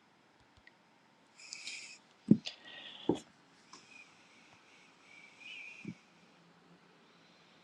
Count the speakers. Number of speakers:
0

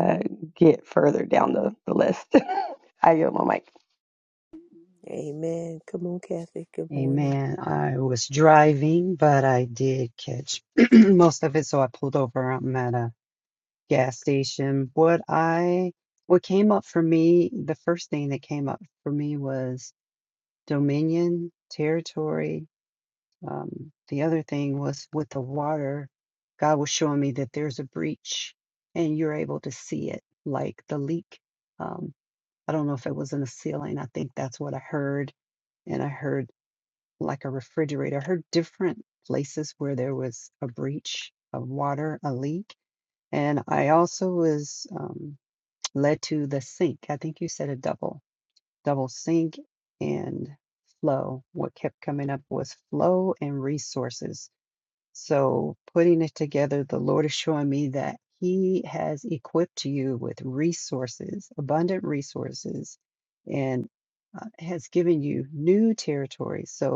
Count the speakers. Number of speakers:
3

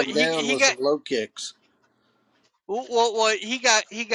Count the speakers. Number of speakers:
2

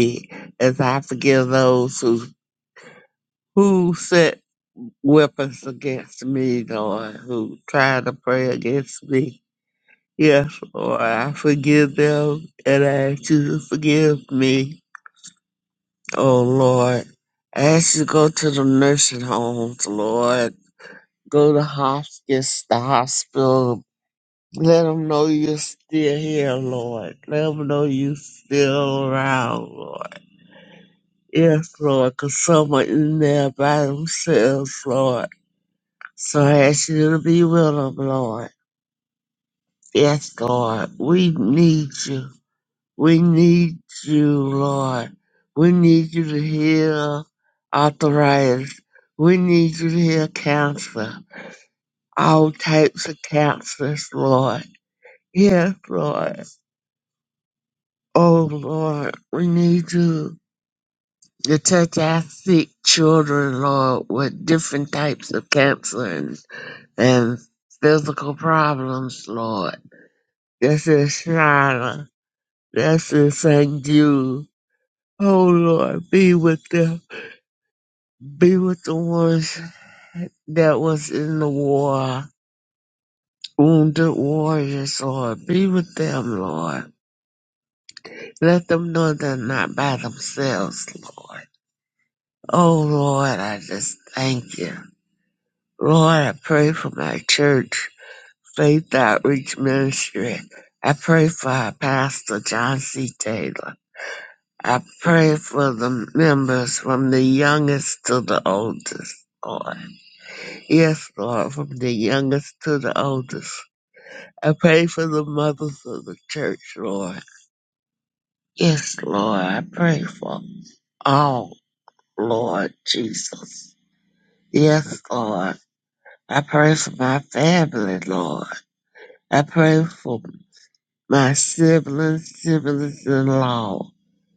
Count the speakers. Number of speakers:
1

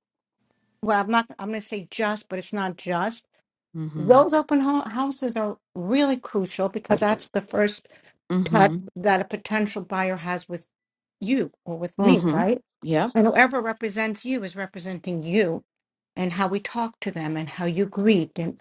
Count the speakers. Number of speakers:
2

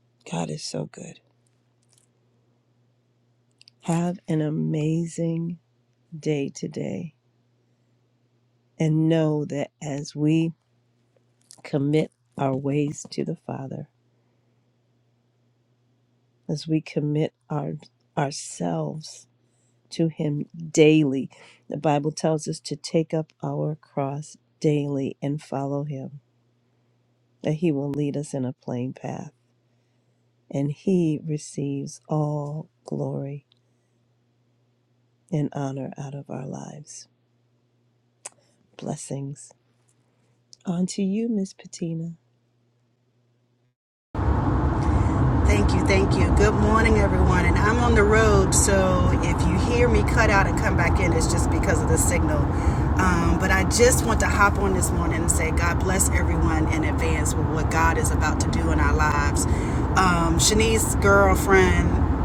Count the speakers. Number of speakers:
2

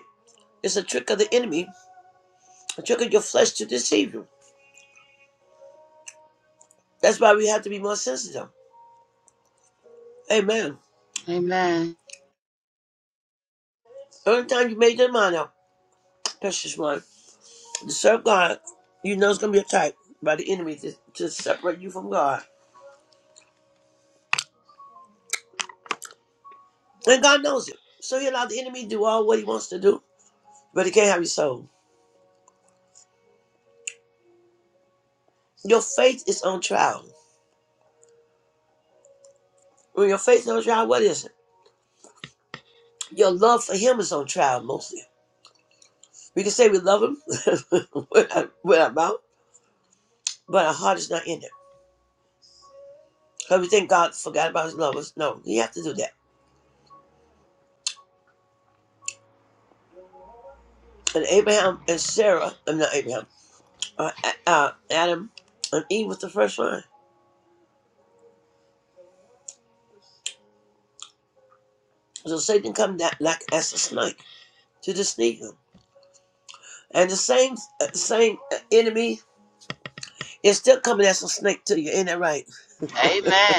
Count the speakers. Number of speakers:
2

